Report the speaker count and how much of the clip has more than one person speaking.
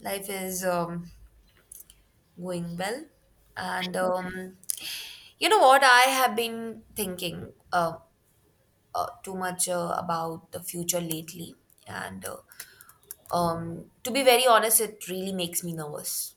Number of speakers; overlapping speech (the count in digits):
1, no overlap